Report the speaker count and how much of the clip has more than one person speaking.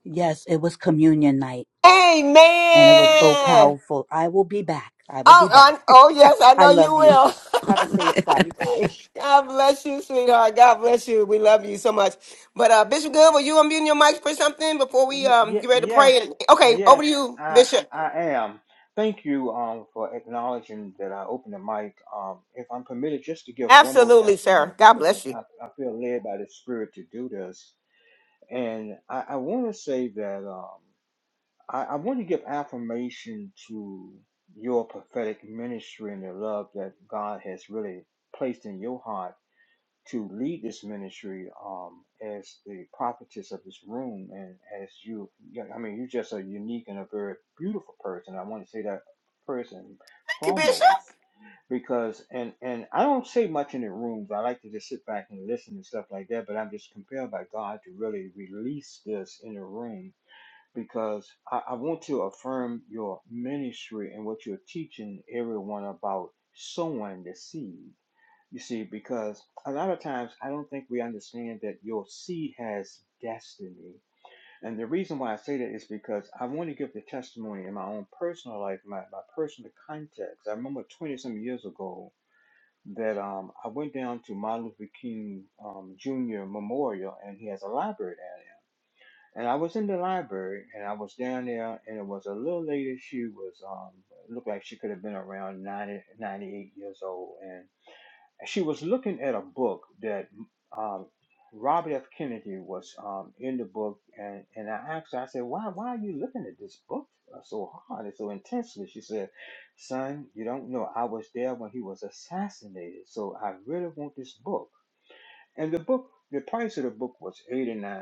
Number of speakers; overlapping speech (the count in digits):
3, about 5%